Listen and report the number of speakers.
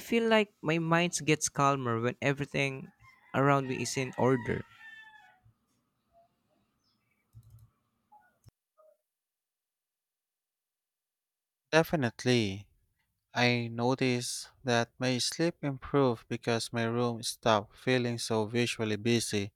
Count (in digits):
2